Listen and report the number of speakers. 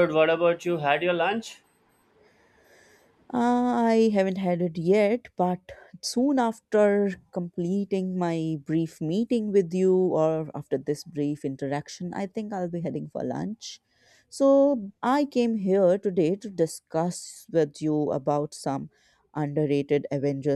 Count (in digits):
2